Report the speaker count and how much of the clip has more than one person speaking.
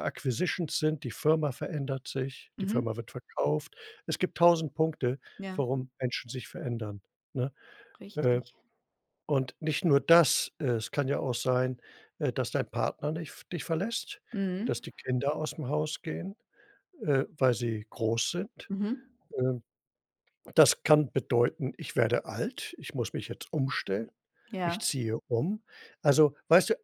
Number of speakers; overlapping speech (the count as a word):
two, about 3%